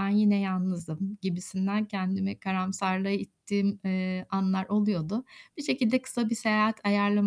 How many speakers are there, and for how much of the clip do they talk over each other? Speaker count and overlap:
one, no overlap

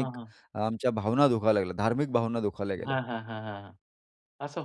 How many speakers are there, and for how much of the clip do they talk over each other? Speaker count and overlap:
two, about 6%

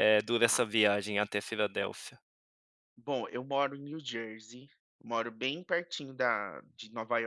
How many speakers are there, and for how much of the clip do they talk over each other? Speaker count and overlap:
two, about 3%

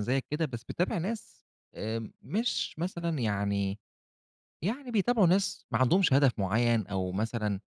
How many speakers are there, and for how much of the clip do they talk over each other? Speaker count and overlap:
one, no overlap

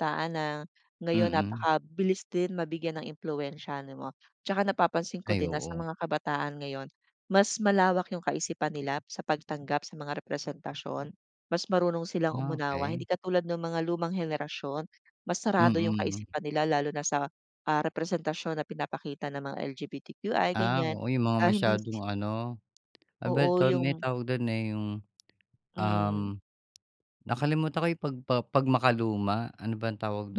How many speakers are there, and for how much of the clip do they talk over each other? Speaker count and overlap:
two, about 15%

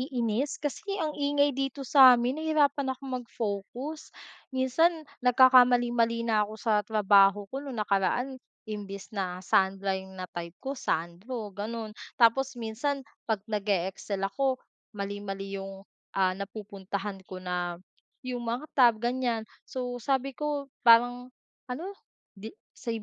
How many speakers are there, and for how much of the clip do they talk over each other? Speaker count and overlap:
one, no overlap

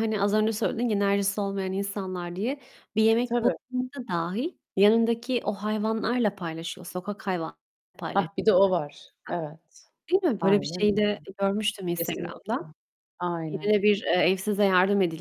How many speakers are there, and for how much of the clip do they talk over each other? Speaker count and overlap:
two, about 12%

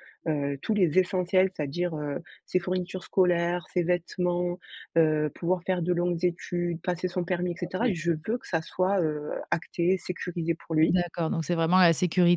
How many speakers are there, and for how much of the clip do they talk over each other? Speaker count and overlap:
two, about 3%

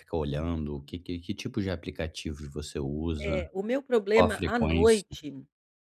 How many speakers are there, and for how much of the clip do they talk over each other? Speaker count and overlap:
two, about 19%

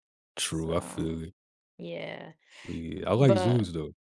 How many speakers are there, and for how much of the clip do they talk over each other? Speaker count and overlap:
two, about 24%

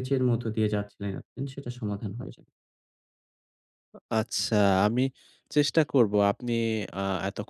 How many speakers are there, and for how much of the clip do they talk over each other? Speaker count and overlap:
two, no overlap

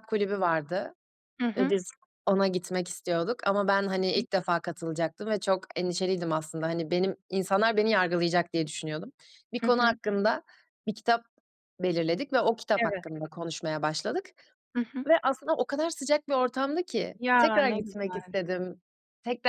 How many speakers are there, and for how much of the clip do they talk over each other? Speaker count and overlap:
two, about 10%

